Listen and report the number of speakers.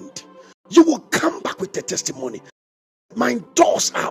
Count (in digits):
1